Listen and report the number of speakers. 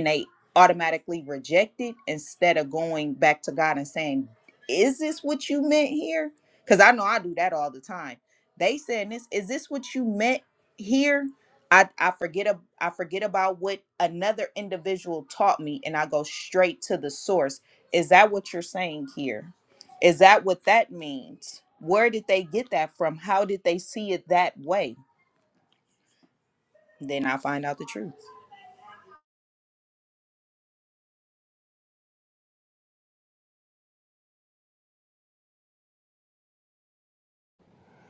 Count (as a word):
one